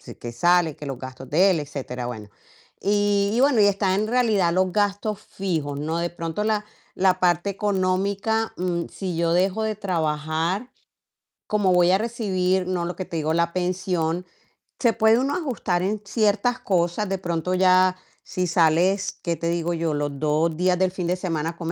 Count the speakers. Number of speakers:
one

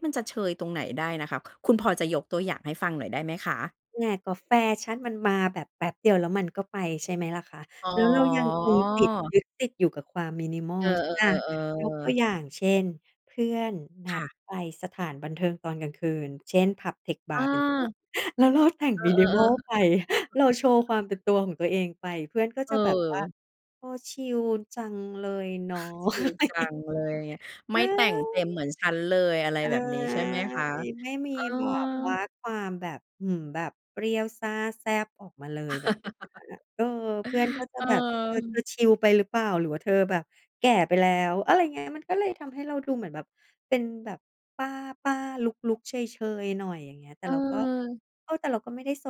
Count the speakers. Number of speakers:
two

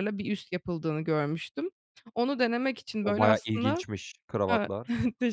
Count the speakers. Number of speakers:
two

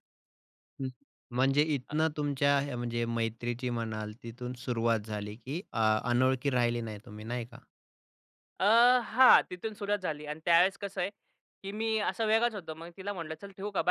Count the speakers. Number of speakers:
two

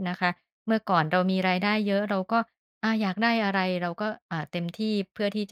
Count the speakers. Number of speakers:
one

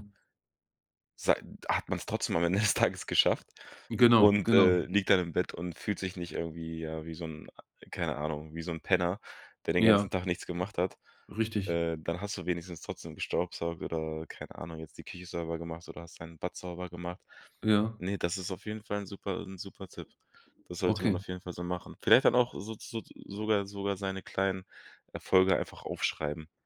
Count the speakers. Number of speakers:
two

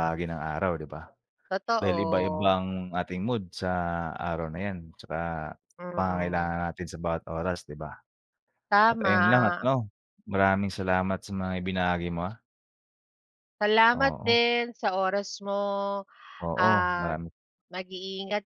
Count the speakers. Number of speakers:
two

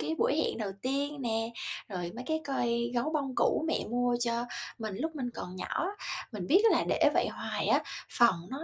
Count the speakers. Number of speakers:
one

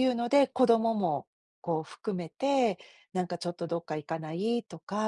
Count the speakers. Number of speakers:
one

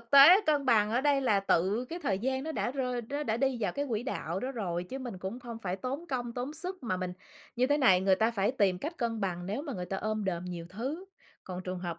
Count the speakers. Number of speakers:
one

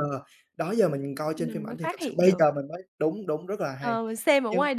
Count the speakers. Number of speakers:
two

